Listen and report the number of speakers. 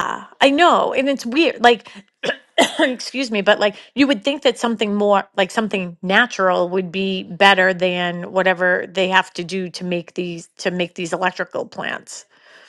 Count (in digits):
1